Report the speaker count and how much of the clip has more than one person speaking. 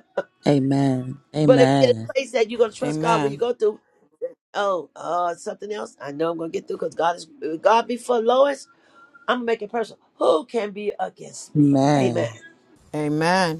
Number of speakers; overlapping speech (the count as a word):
three, about 14%